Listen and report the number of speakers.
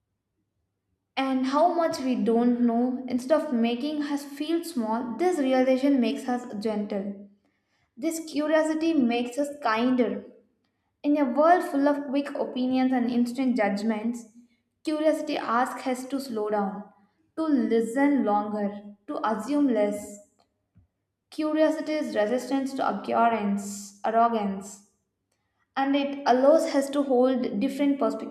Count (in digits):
1